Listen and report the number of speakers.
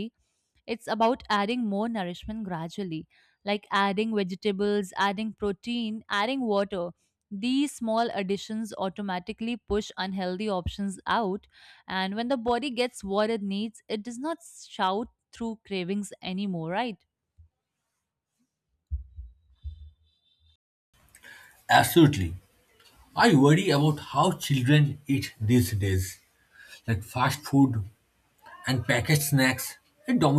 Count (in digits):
2